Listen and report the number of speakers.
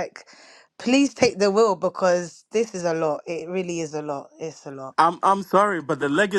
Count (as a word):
two